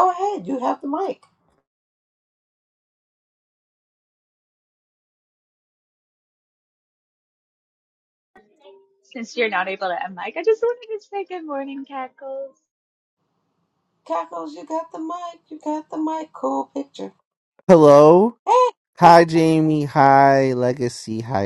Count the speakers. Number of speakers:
3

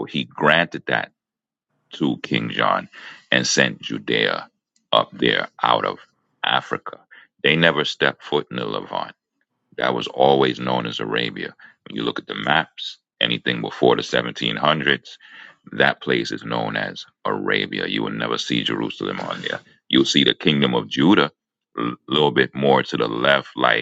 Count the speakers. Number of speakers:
1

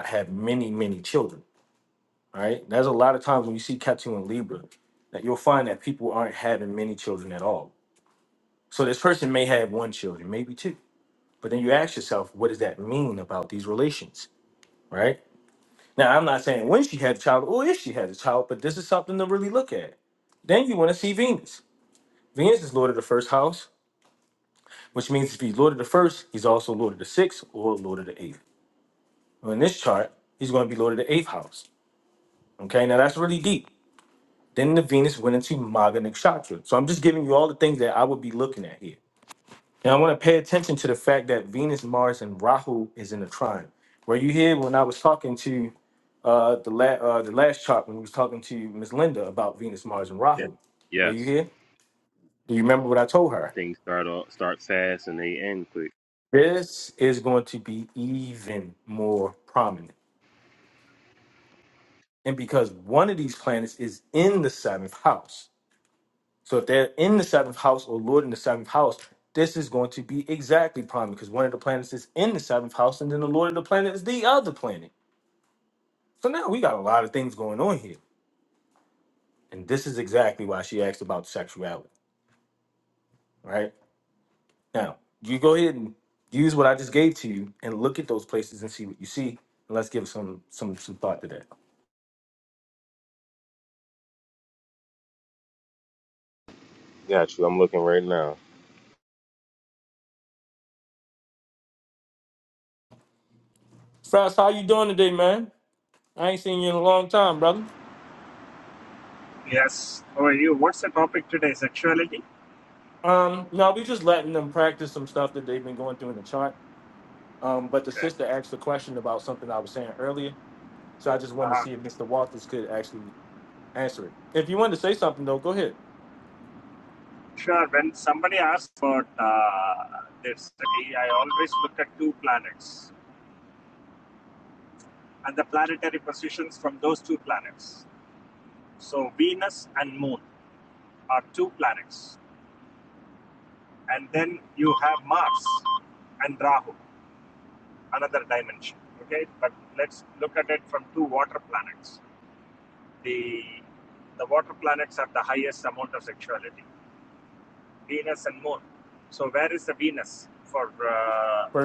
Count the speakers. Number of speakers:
3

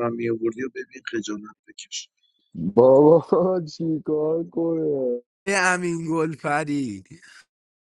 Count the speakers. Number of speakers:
3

